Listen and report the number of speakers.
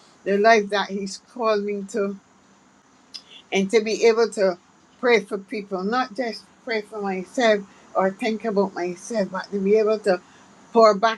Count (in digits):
1